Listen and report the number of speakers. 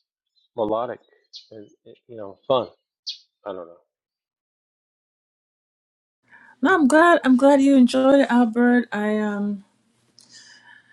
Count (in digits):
2